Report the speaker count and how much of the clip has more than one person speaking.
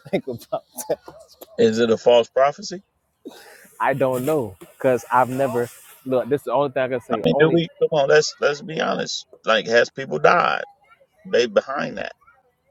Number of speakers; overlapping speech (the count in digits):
2, about 4%